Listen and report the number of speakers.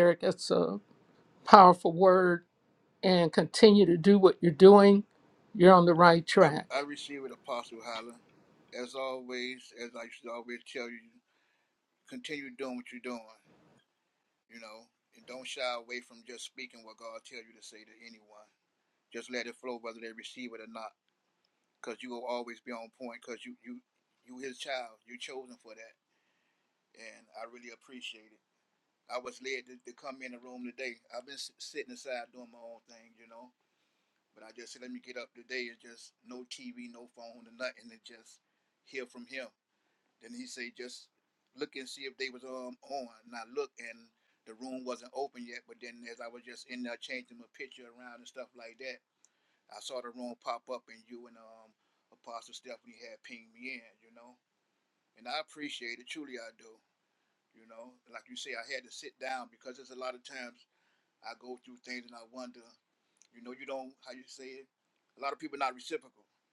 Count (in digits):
2